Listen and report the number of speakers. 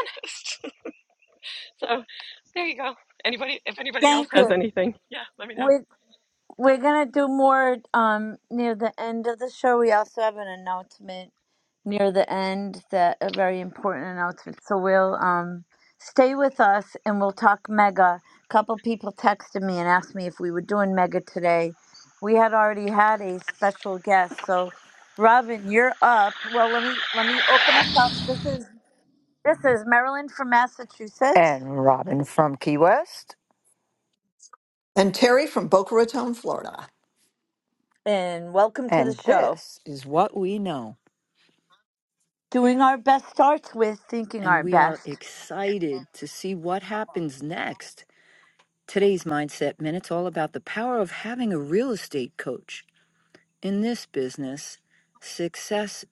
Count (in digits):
4